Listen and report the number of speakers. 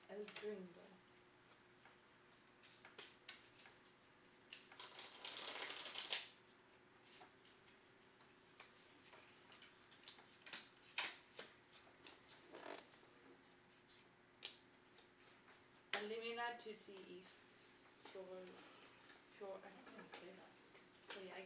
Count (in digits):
1